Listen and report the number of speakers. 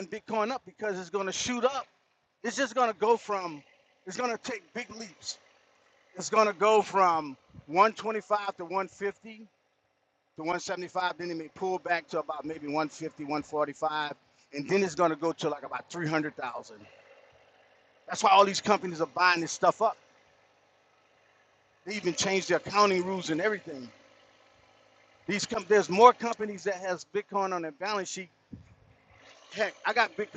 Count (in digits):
1